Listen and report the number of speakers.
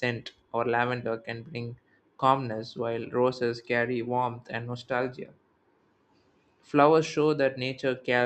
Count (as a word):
one